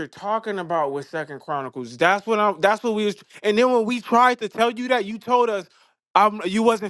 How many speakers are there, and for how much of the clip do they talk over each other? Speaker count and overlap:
one, no overlap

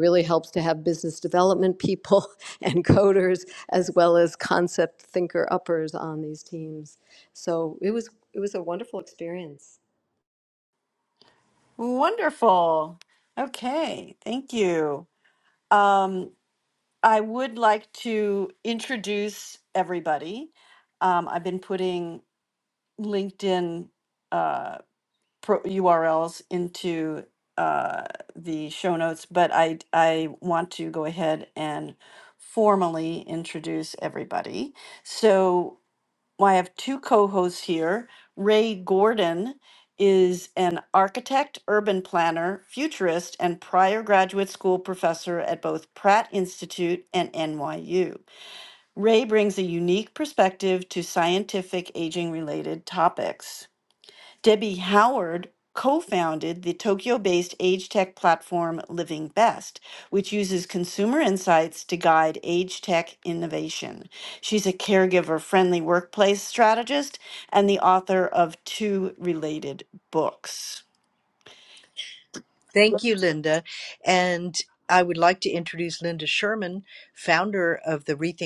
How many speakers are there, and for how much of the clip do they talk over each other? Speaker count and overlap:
three, no overlap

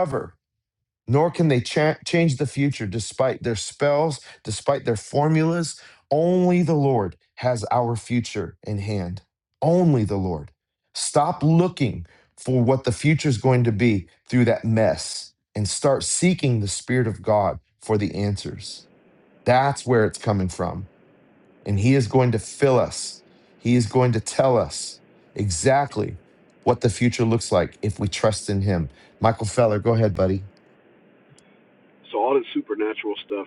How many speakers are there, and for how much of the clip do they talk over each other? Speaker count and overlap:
two, no overlap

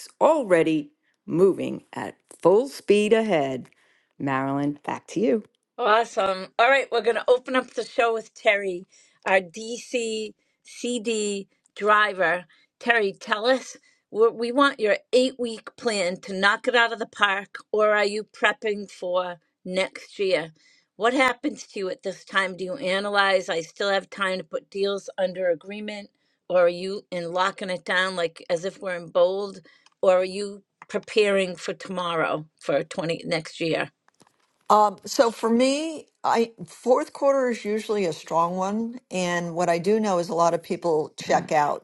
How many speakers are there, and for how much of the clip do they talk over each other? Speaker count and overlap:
three, no overlap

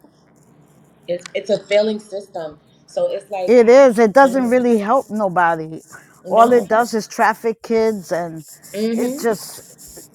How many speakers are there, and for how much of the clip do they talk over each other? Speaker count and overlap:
two, about 14%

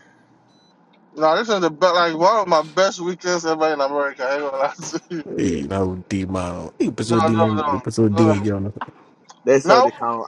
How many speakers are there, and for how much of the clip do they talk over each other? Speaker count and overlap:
three, about 19%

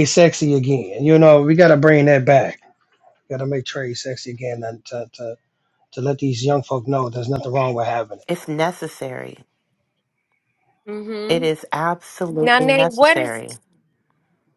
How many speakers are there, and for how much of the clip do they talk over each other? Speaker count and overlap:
three, about 7%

